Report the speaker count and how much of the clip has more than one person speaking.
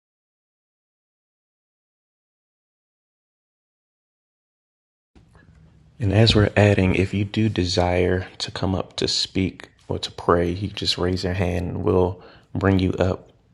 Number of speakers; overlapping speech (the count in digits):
1, no overlap